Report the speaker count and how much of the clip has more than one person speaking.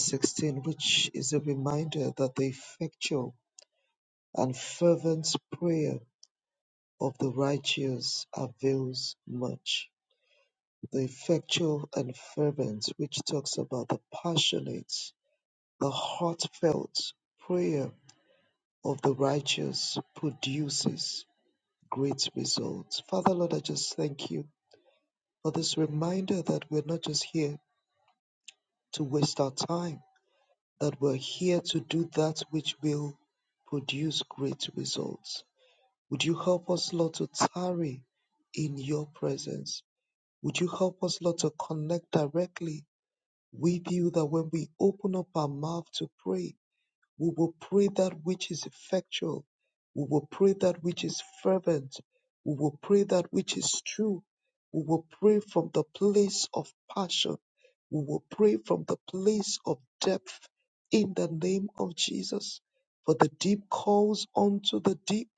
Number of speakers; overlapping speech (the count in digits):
1, no overlap